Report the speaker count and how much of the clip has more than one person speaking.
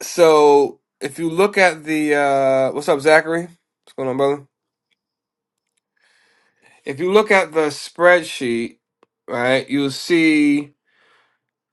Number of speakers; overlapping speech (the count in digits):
1, no overlap